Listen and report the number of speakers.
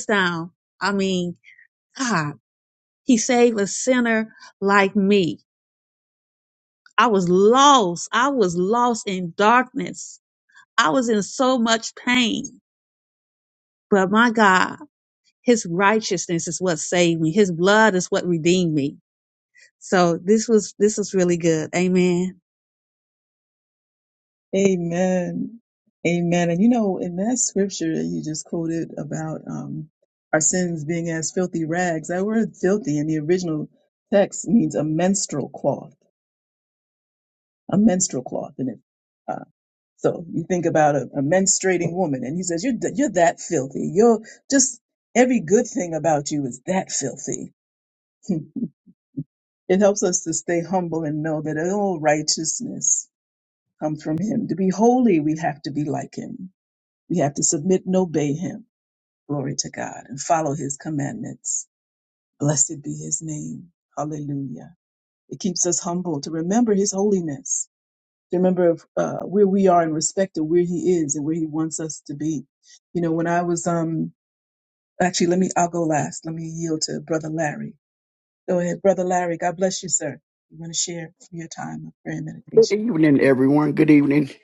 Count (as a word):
three